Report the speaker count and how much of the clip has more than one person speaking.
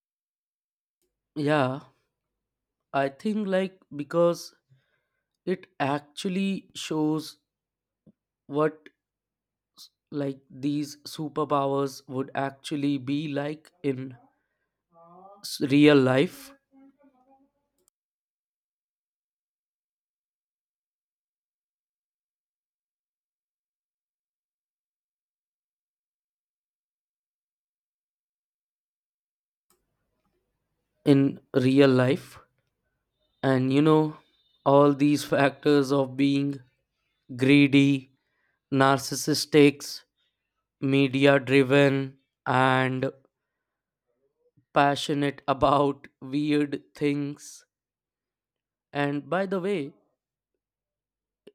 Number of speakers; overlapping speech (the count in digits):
1, no overlap